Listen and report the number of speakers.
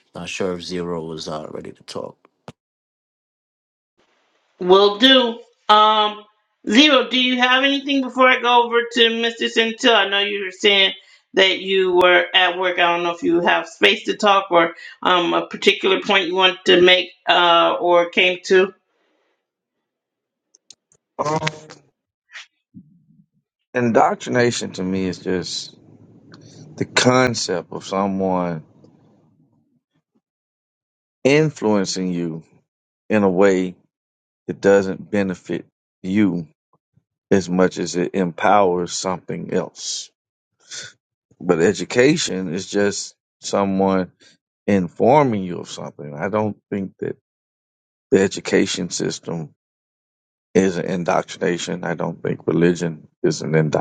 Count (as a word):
three